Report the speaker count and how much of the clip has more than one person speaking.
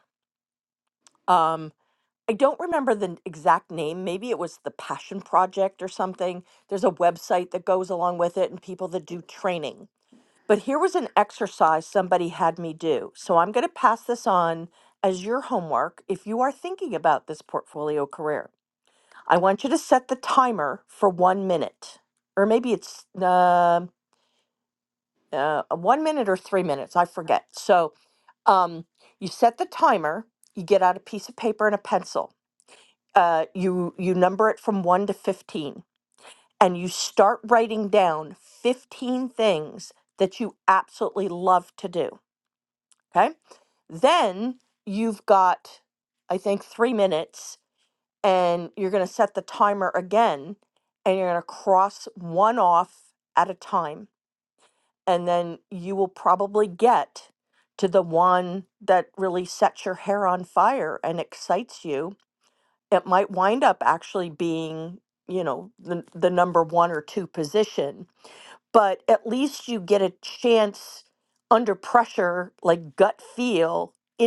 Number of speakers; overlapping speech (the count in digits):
1, no overlap